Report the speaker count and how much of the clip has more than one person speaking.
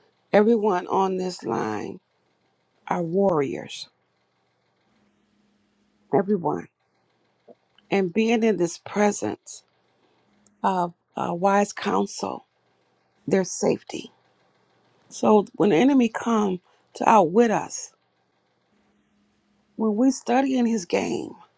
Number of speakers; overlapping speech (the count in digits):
1, no overlap